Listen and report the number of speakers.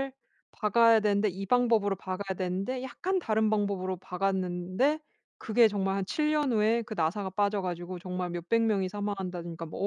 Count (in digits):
1